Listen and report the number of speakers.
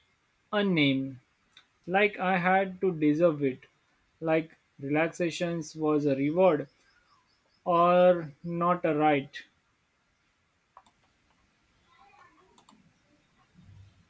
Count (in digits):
1